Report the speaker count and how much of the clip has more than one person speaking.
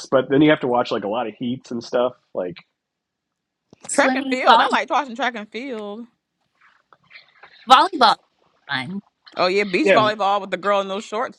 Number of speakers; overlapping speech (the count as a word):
three, about 10%